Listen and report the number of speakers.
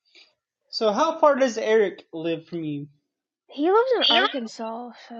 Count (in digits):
2